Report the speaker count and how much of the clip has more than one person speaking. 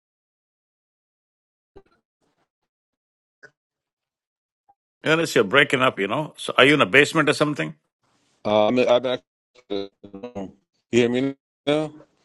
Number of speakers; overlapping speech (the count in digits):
2, no overlap